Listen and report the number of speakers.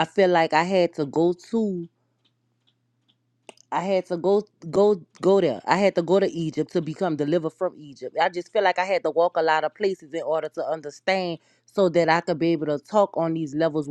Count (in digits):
1